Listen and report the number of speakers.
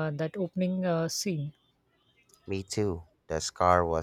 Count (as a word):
two